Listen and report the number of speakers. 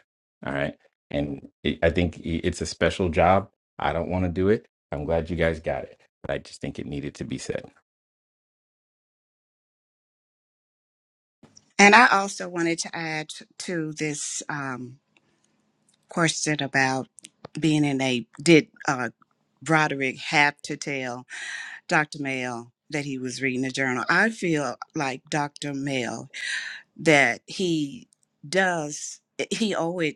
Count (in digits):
2